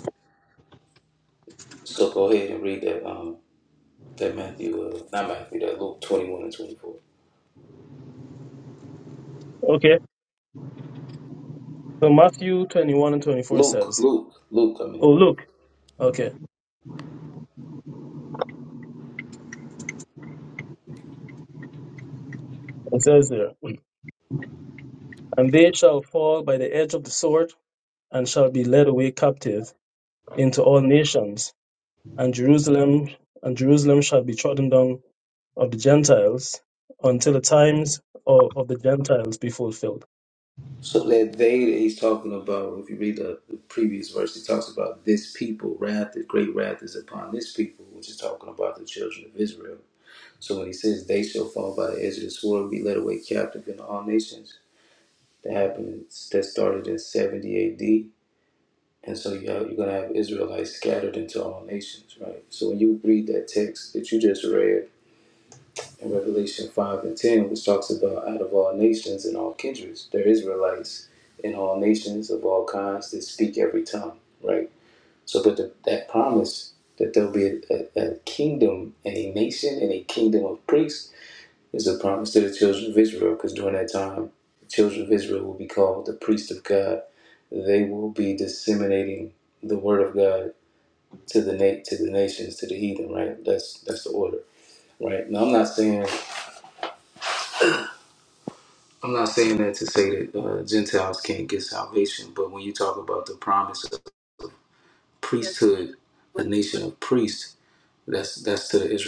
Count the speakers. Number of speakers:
2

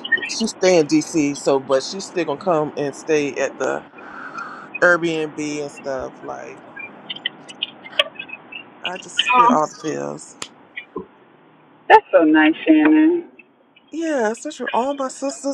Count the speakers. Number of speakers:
2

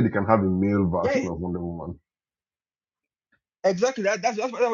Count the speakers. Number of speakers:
2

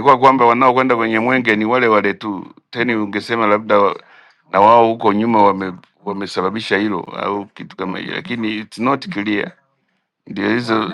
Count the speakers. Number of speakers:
1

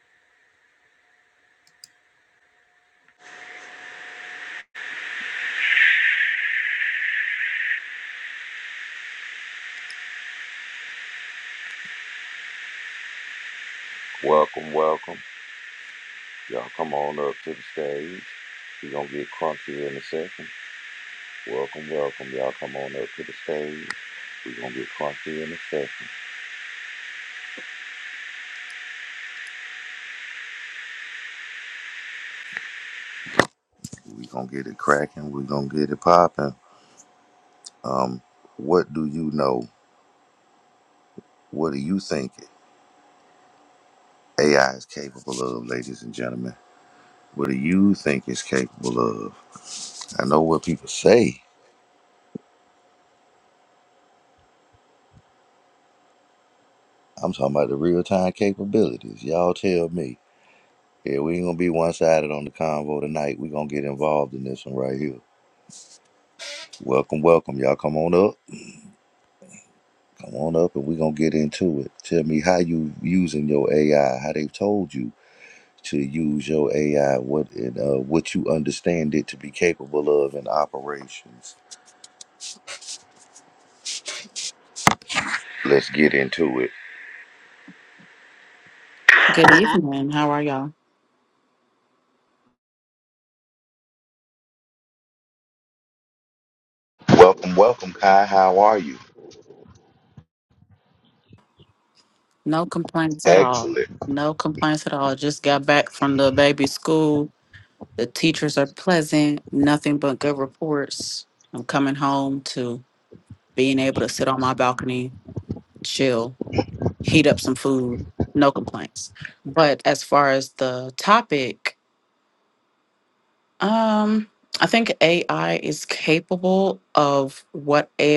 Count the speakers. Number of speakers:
2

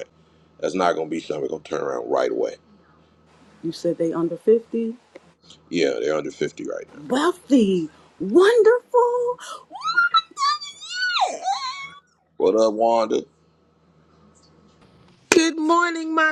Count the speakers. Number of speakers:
3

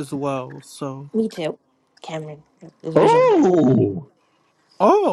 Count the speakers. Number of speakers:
3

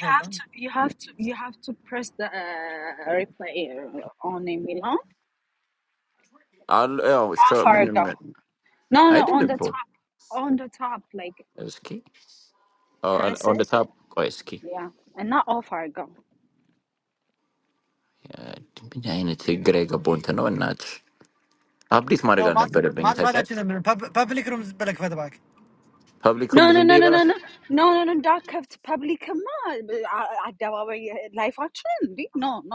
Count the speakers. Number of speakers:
3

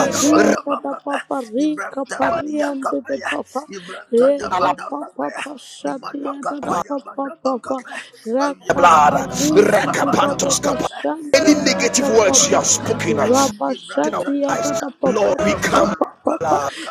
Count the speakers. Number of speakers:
3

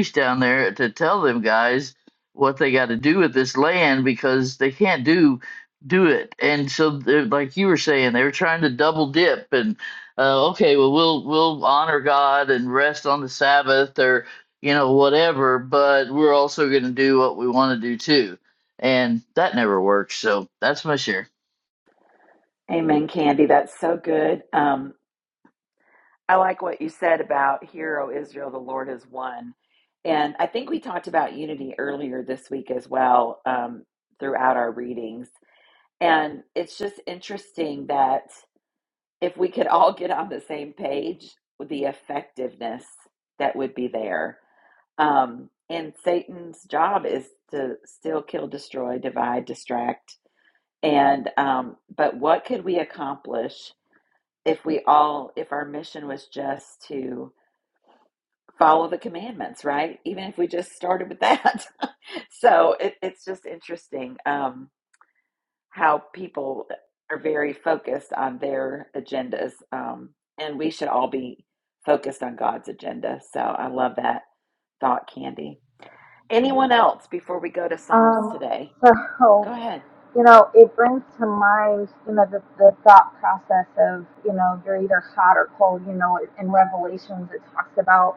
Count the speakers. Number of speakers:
3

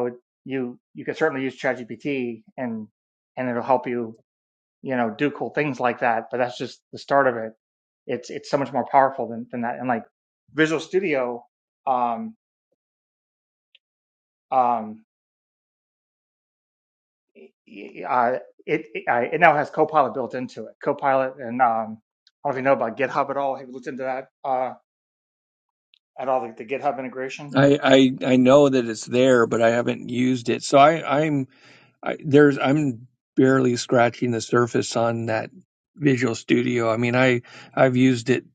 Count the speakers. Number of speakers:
2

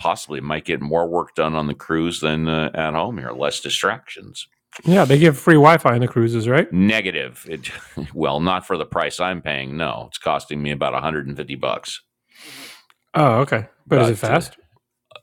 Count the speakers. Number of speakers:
2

